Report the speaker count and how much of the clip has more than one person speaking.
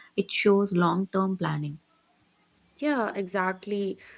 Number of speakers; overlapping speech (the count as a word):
two, no overlap